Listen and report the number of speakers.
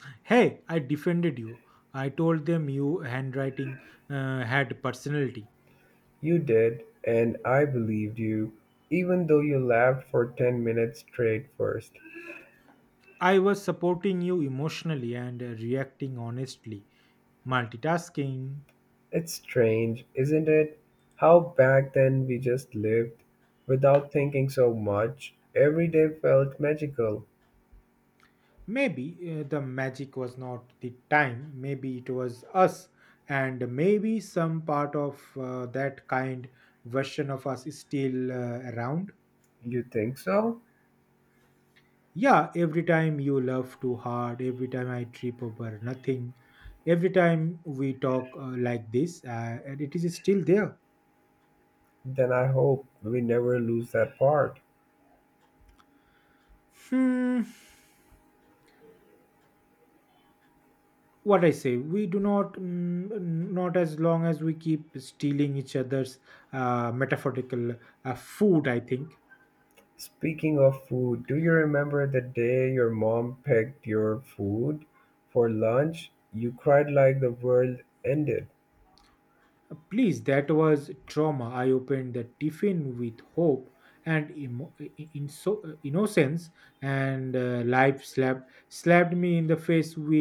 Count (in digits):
2